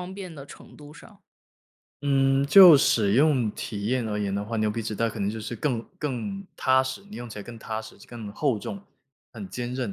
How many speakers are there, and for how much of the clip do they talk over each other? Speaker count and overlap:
2, no overlap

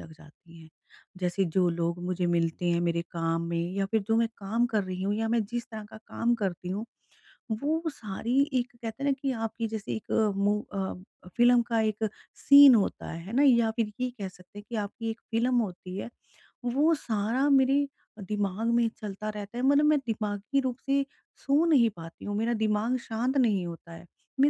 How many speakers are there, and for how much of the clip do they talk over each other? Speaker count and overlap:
1, no overlap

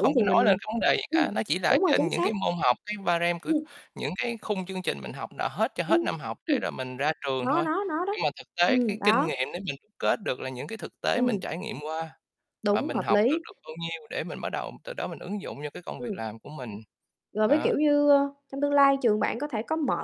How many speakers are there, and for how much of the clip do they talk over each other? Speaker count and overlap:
2, about 21%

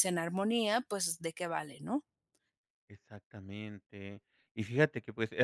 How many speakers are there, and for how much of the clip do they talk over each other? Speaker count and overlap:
2, no overlap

